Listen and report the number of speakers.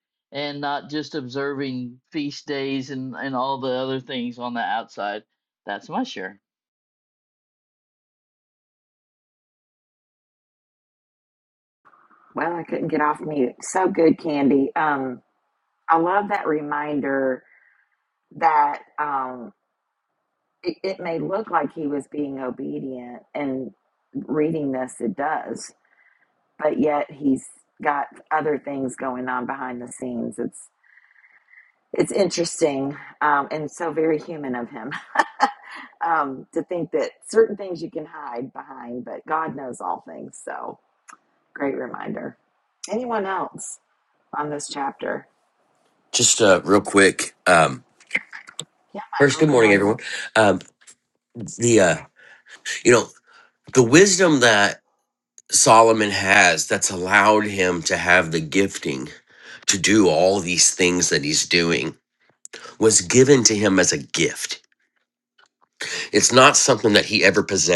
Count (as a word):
three